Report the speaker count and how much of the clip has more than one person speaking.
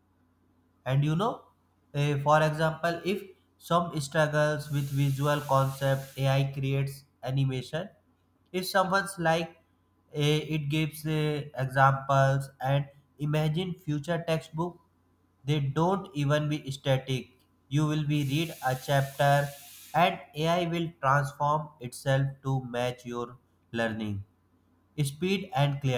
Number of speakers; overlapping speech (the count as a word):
one, no overlap